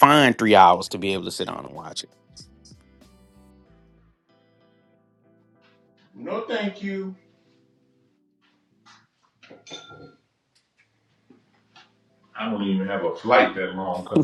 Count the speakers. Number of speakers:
2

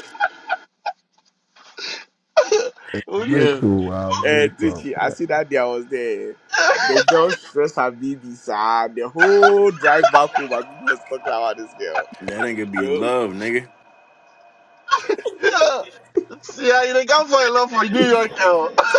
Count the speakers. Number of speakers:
4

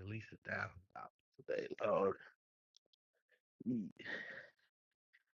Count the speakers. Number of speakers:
1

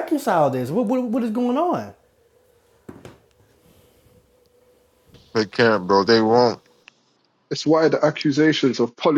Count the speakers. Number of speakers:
3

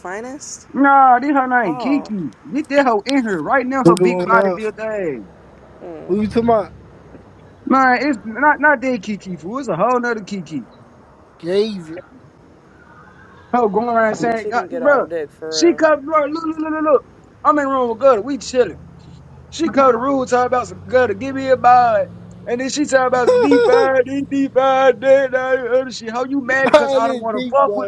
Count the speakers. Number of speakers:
3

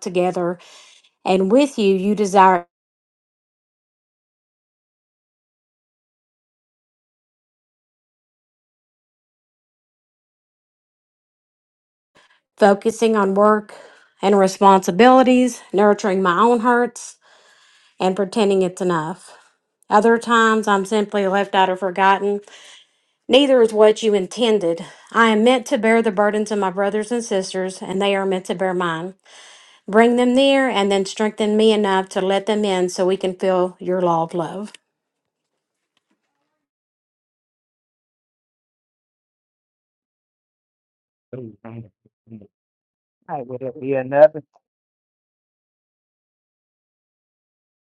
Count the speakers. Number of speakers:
2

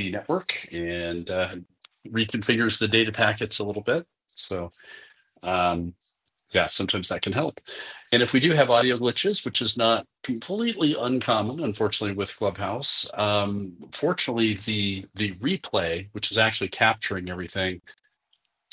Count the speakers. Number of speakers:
1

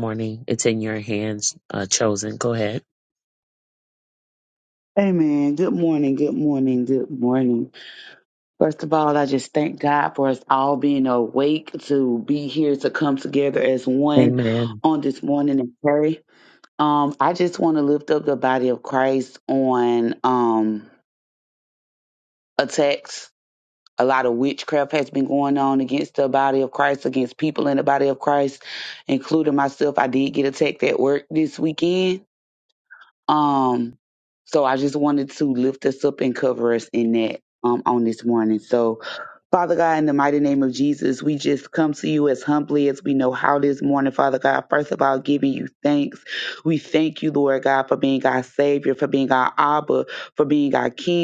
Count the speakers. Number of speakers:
2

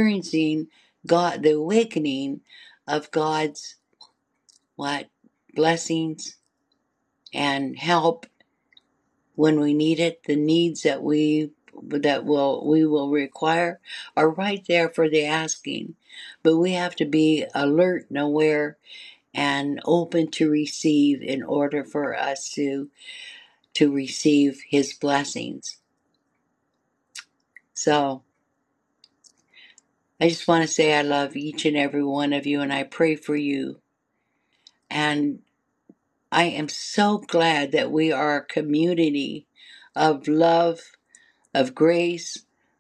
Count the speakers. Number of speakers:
1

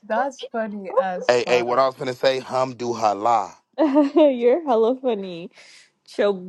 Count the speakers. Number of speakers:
3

